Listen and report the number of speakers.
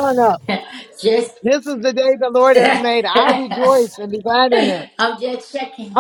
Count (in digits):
2